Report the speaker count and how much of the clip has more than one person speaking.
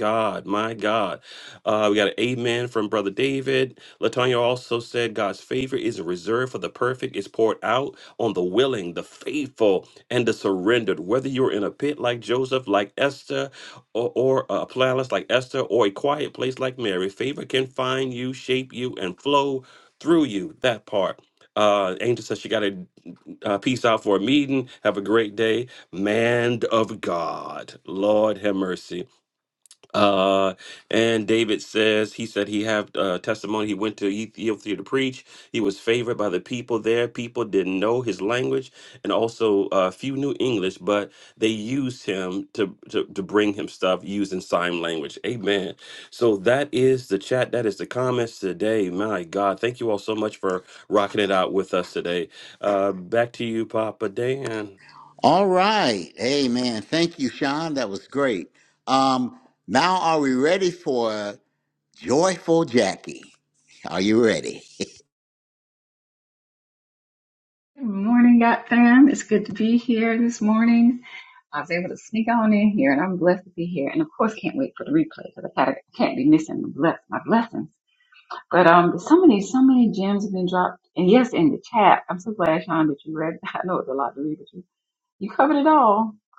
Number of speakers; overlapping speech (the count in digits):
3, no overlap